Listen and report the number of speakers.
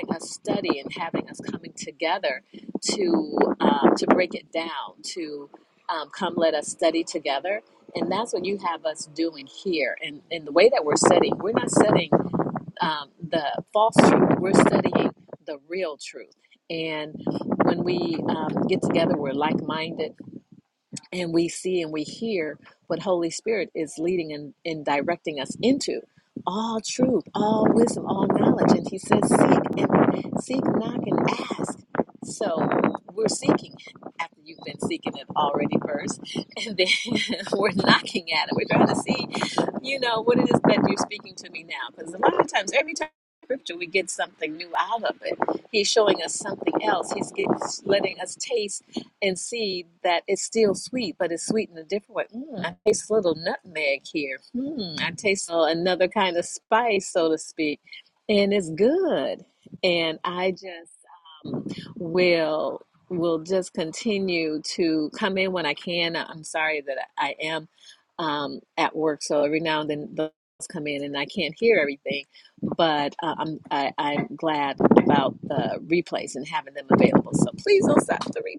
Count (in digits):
1